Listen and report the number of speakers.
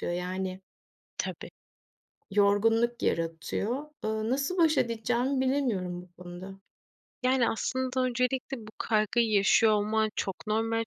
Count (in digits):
2